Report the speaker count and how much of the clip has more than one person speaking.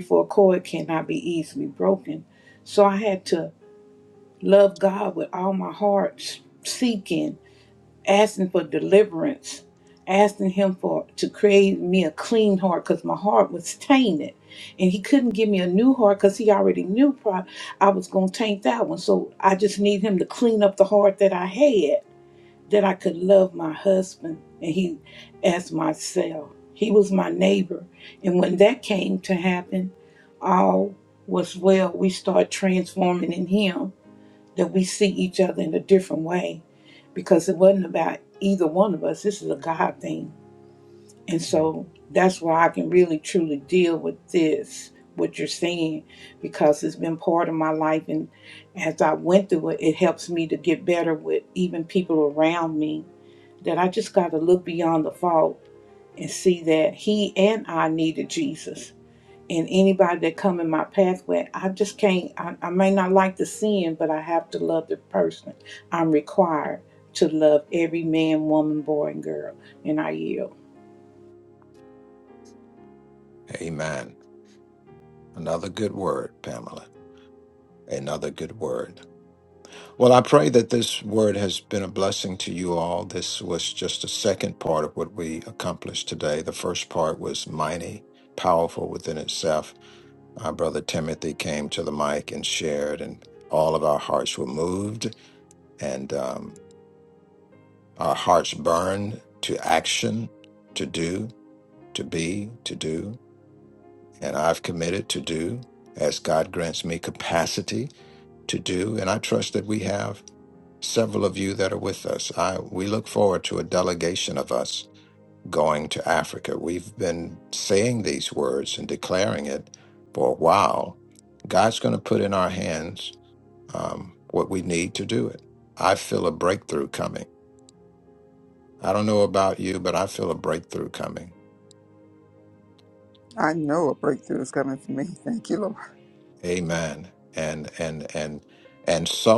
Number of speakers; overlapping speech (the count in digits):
3, no overlap